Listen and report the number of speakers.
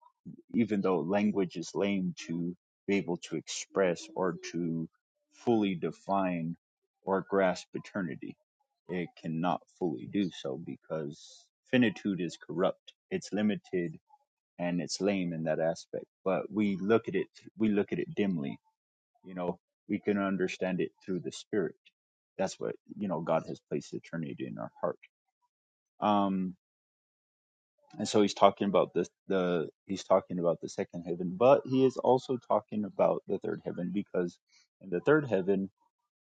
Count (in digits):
1